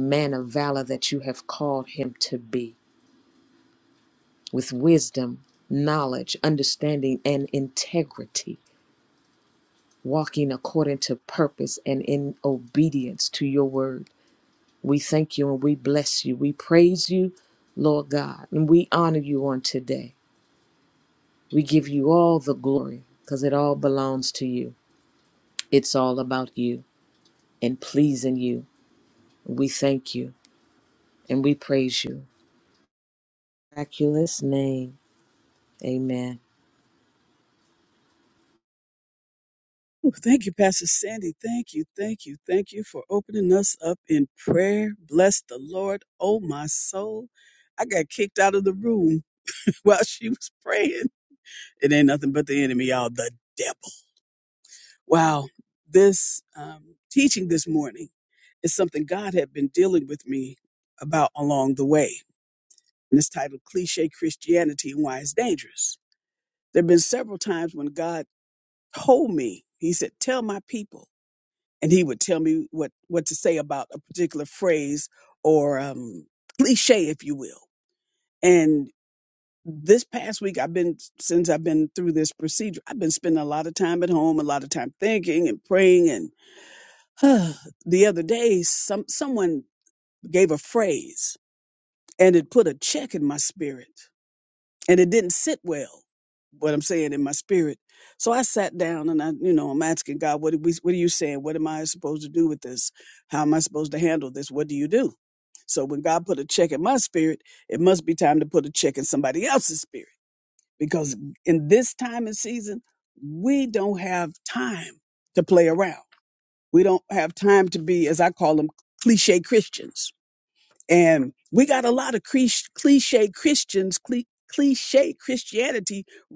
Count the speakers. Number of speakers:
two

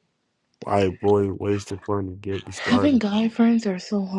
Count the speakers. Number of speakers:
two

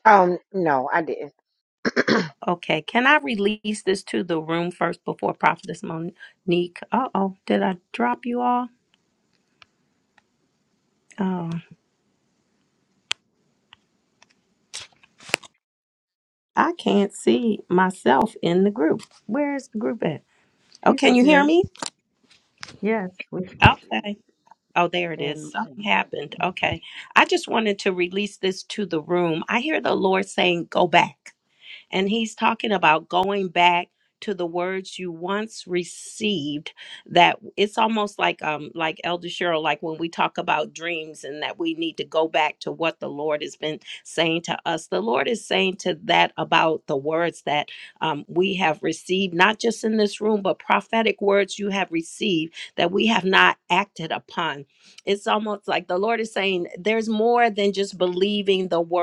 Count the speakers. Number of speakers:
three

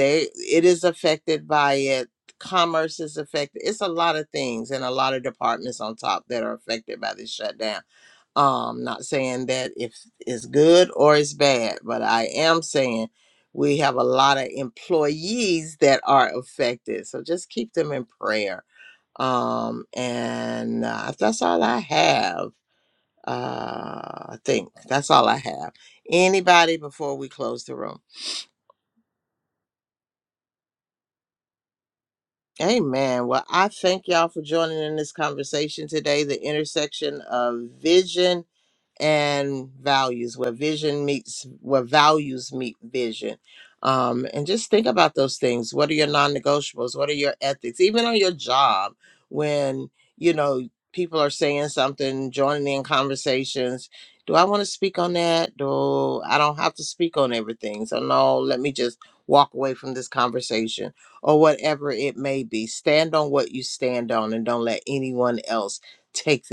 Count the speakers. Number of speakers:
one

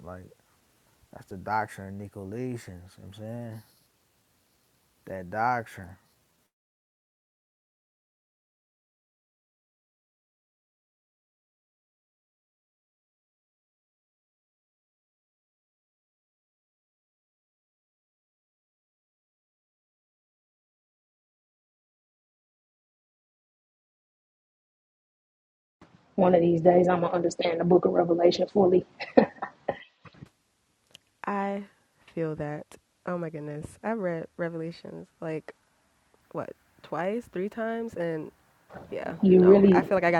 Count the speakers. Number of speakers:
three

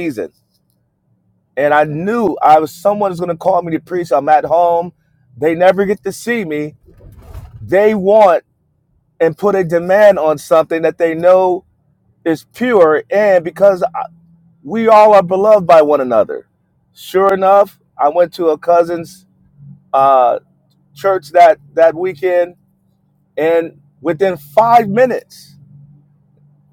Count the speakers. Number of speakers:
one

